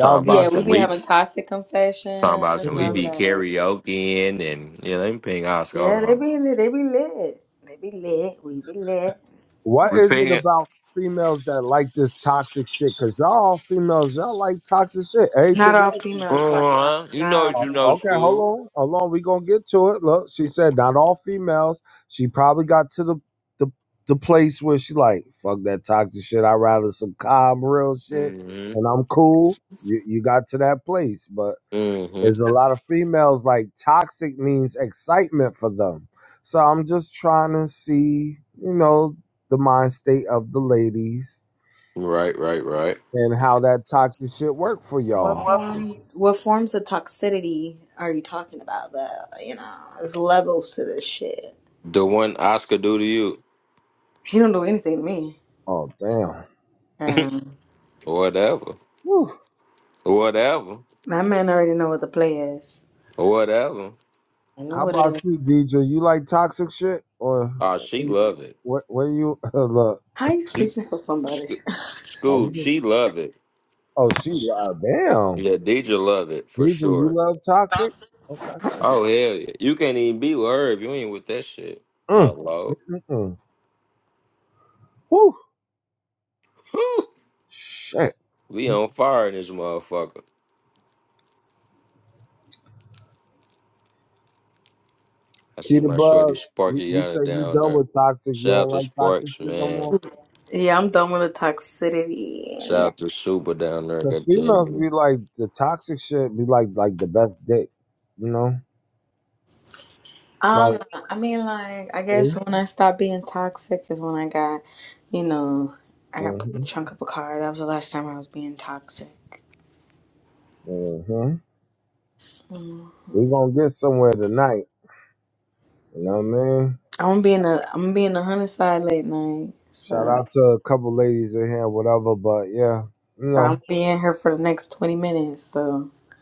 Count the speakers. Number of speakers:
3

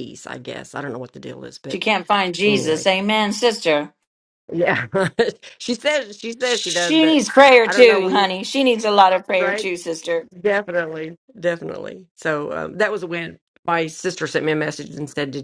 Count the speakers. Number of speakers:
2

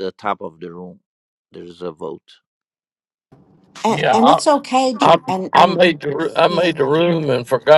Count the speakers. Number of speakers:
3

